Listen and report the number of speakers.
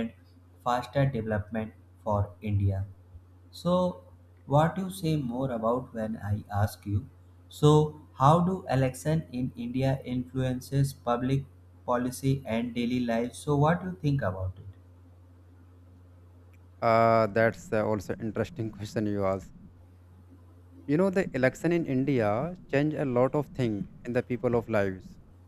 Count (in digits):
2